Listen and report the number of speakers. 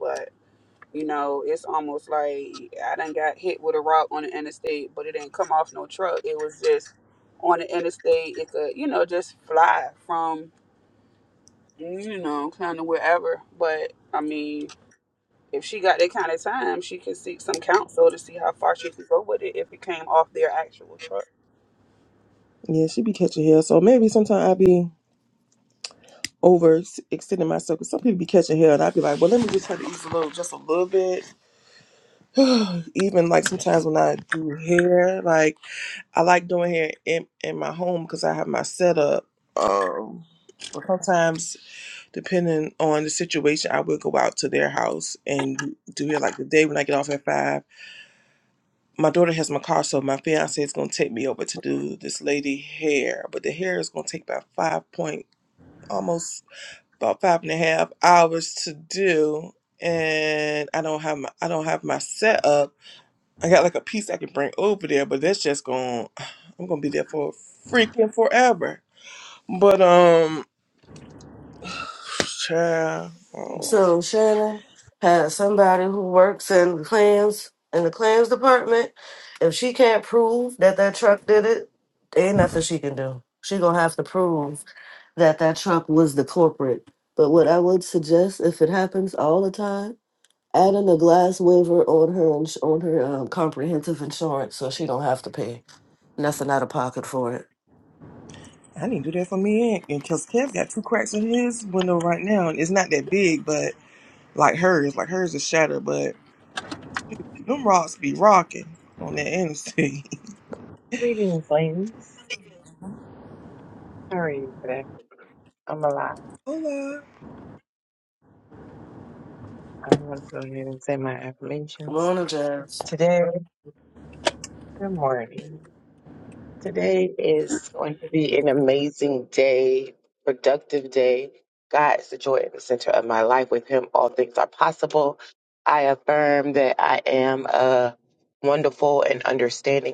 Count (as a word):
four